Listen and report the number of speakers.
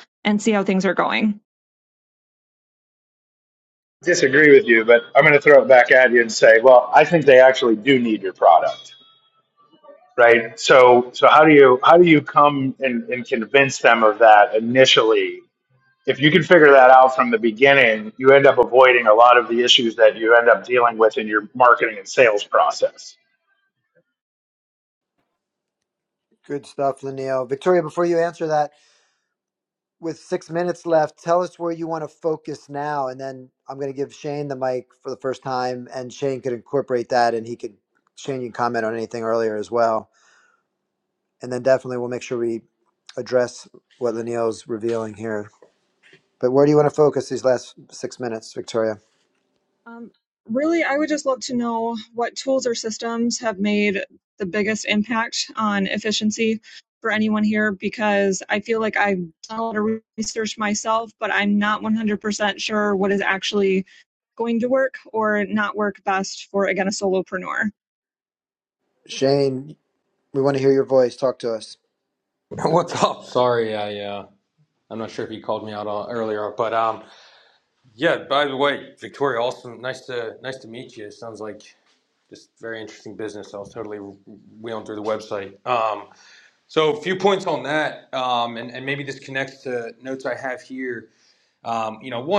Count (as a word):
four